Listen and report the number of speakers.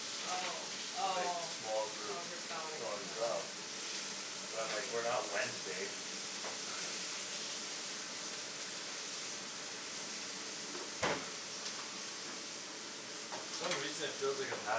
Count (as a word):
two